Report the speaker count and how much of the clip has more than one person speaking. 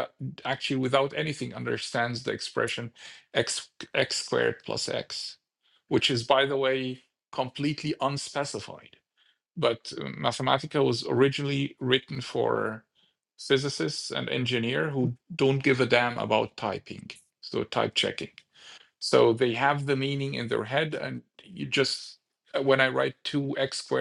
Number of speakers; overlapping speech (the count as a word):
one, no overlap